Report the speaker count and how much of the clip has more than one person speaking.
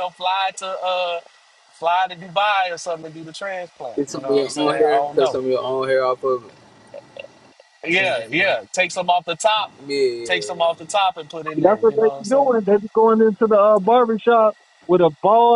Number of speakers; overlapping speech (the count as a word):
three, about 19%